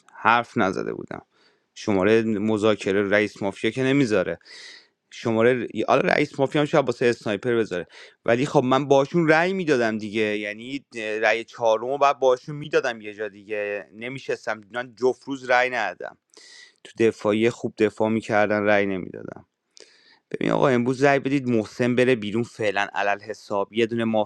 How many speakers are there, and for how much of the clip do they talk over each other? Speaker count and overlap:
one, no overlap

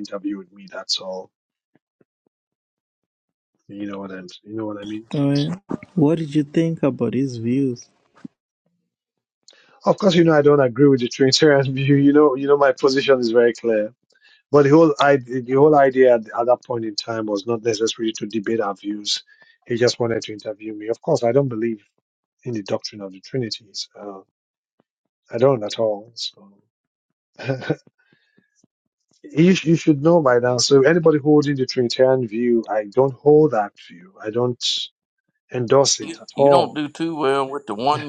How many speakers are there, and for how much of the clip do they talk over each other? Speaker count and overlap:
three, about 2%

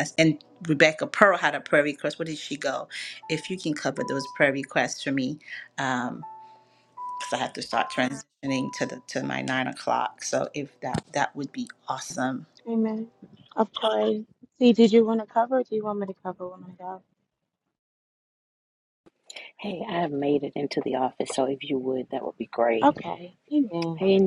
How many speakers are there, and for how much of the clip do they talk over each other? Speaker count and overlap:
three, under 1%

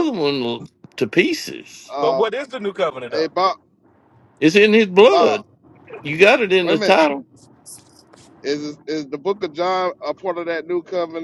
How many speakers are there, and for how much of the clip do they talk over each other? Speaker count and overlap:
three, about 10%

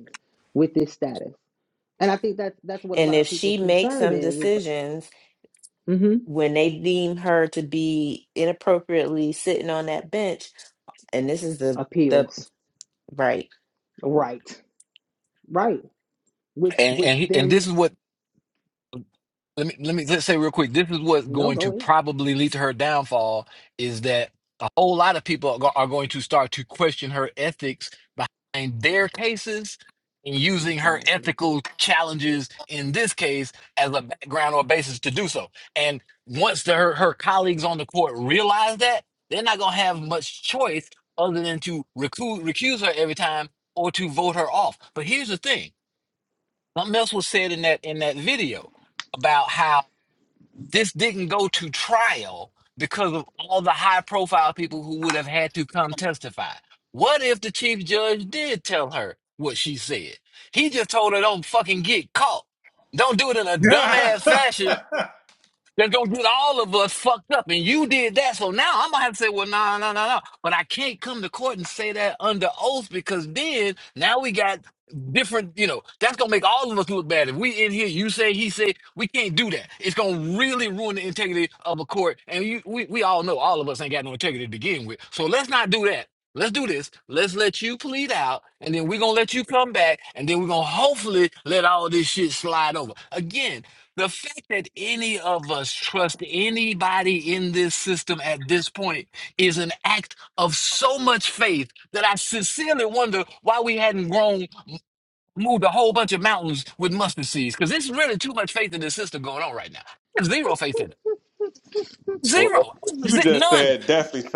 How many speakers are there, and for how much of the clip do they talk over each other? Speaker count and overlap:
four, about 5%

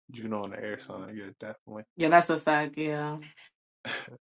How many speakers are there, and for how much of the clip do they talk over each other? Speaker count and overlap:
two, no overlap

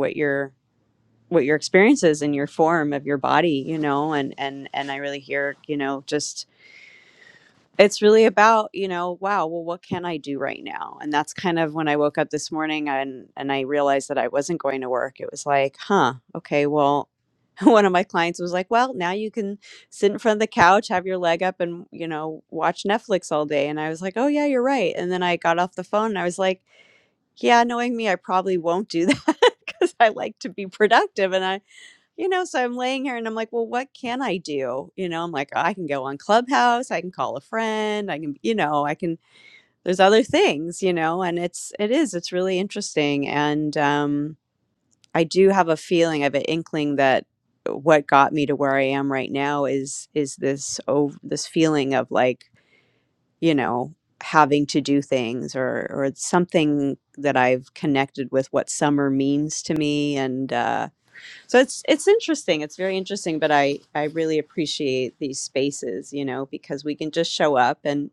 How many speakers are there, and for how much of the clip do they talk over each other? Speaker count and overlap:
one, no overlap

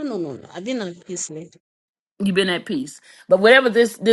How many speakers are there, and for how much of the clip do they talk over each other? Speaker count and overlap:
two, no overlap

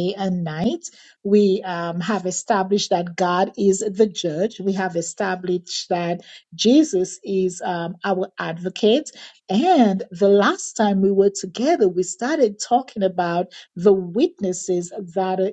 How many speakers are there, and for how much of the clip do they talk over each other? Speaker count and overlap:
one, no overlap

